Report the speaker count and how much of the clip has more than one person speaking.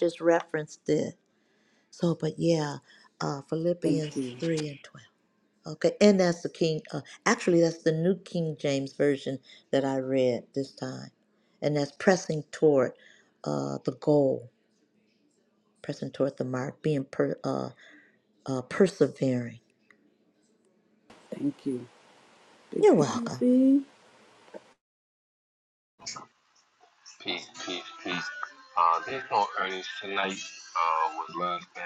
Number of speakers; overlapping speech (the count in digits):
3, about 3%